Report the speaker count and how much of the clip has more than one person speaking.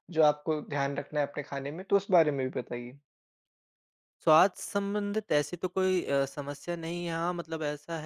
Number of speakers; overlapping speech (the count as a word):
two, no overlap